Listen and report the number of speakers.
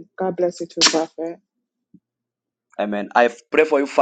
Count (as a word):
two